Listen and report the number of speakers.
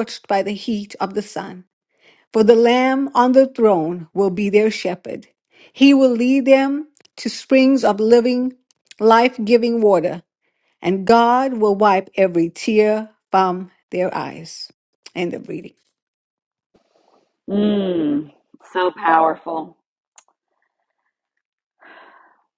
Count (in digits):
2